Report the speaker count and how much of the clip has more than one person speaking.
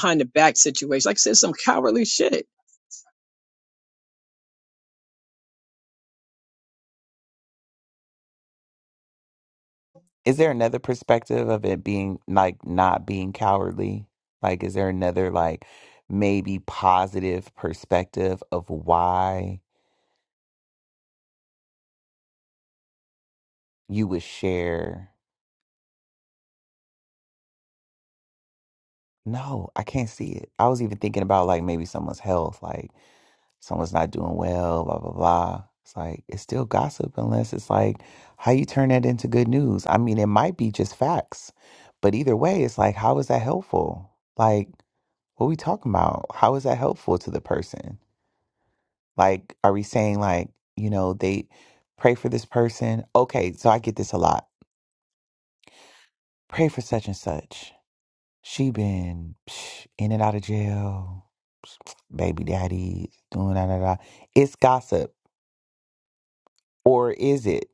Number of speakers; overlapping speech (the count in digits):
2, no overlap